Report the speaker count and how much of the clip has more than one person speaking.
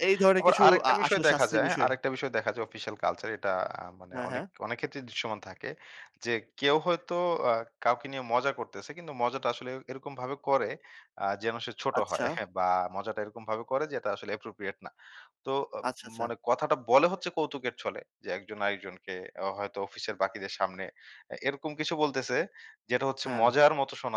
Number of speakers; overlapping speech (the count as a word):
two, about 11%